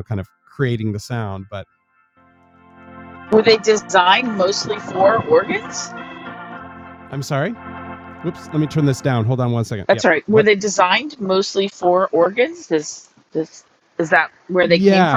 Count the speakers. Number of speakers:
two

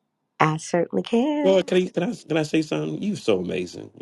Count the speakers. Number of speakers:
two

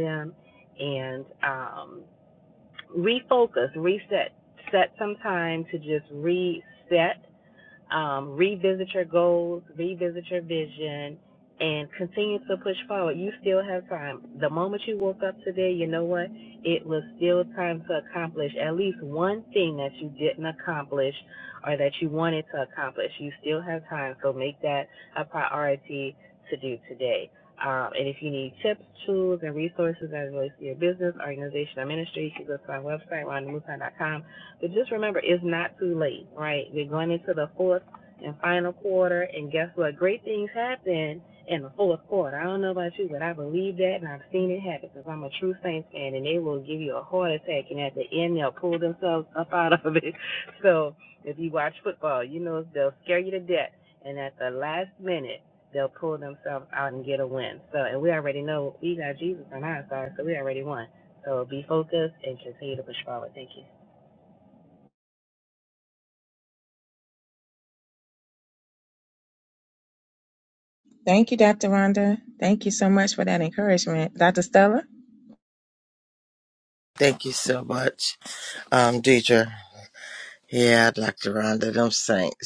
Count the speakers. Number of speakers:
three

